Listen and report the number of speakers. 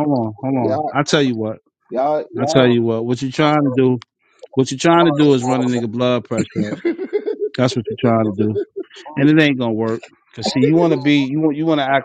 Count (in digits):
2